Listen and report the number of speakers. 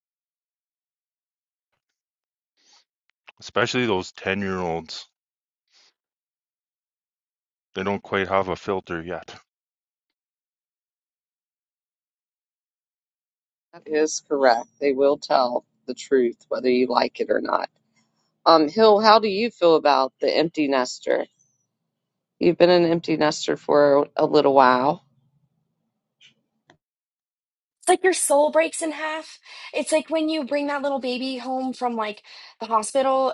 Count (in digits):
3